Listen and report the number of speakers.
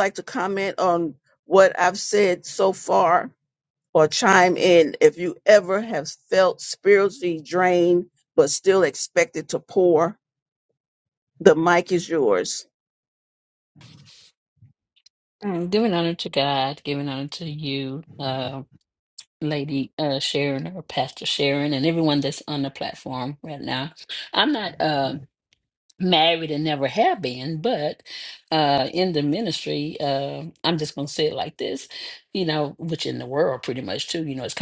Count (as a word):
two